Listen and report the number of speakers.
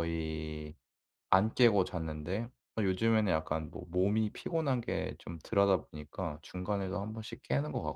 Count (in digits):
1